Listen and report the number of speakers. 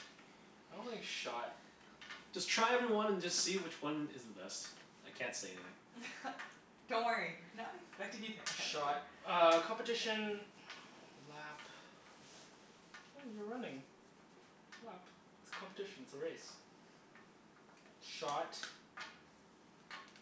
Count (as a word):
three